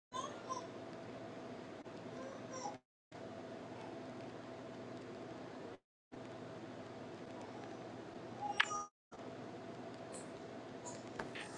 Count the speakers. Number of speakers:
zero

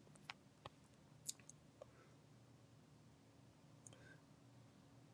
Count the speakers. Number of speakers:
zero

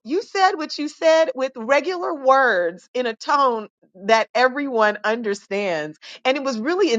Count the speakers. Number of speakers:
one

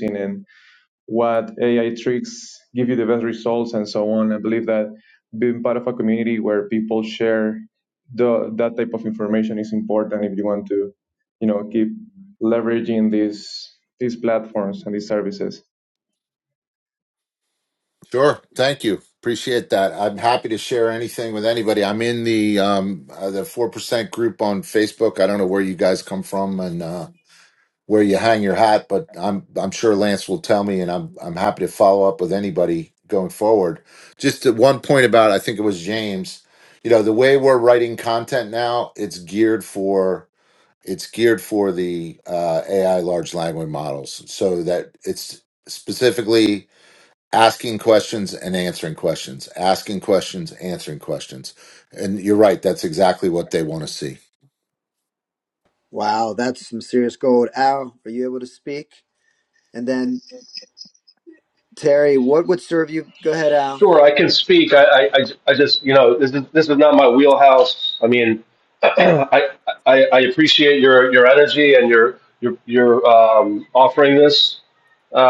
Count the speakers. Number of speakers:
four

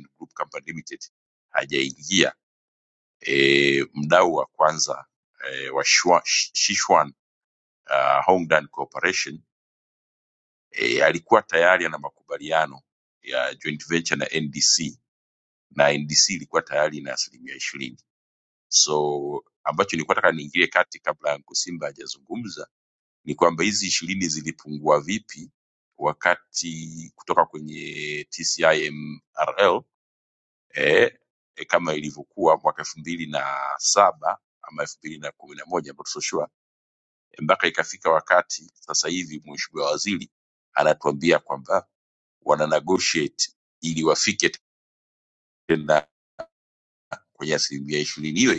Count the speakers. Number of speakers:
one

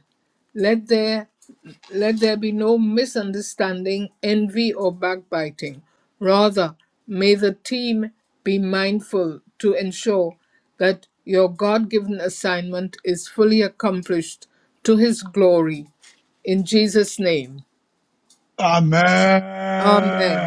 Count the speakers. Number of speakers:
two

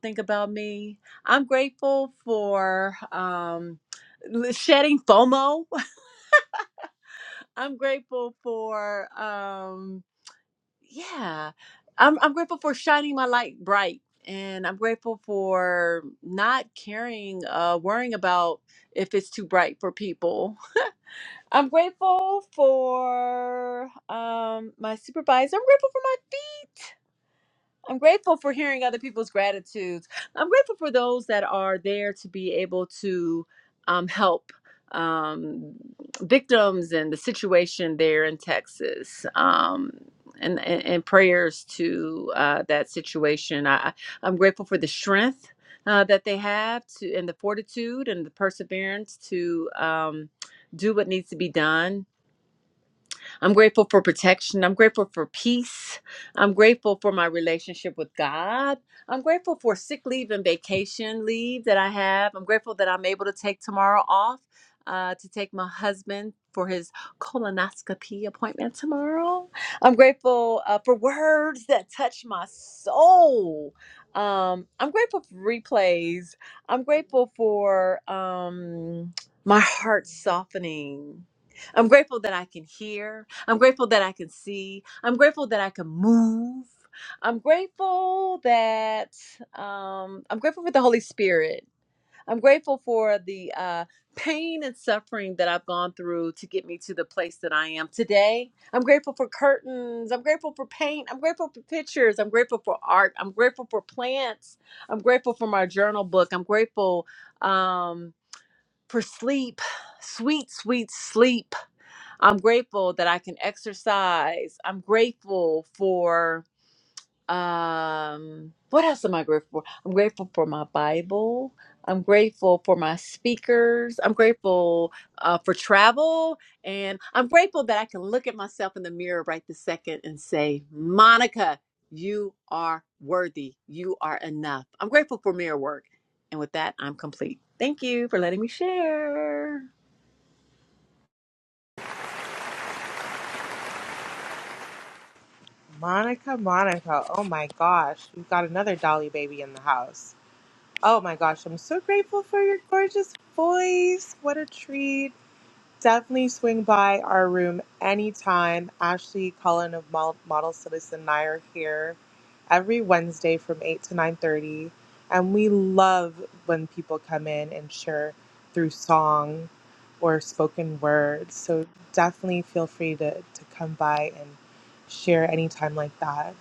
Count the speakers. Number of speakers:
two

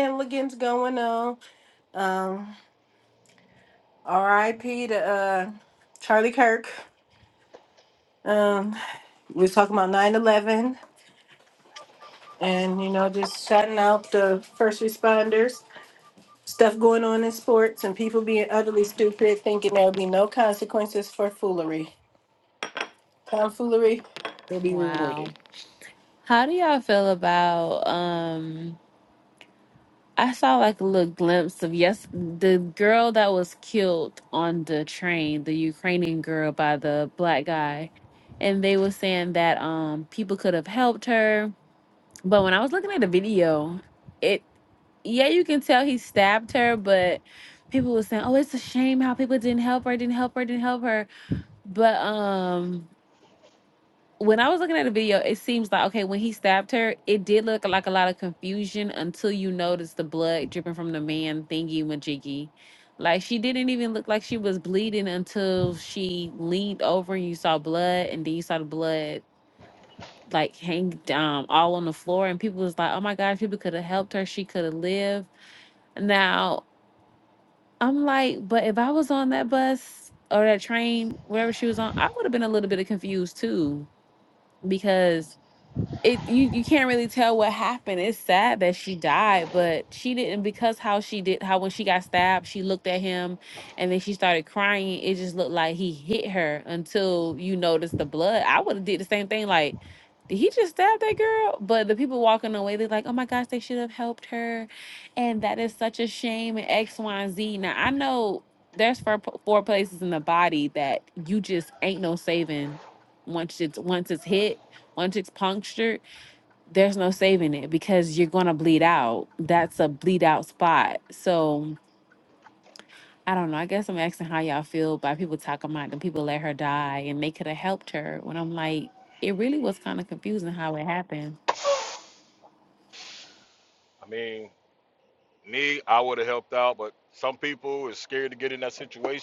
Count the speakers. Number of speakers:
three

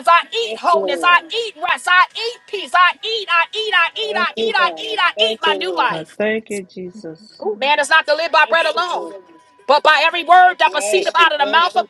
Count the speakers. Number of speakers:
two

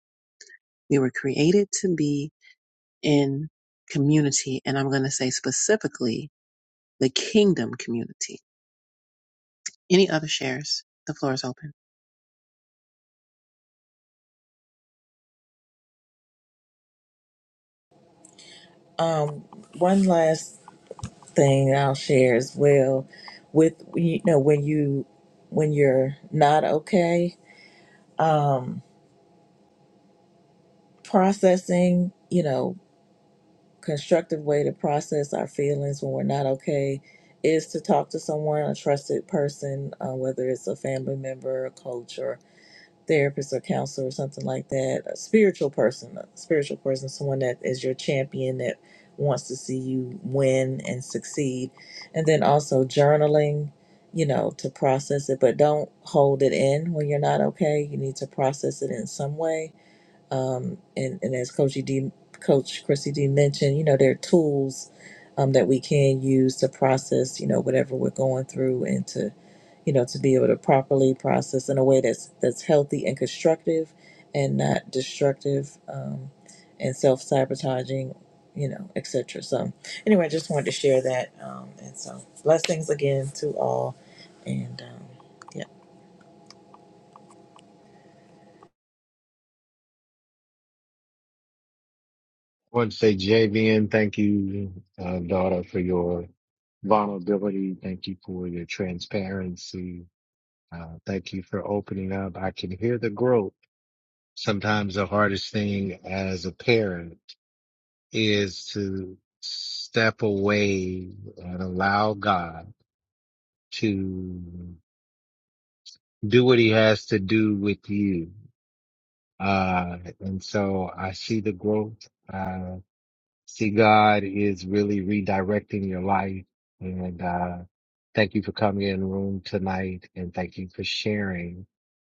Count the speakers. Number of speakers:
three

